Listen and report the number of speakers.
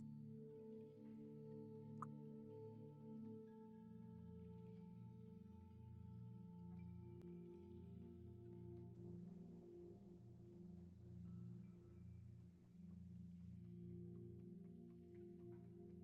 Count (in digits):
0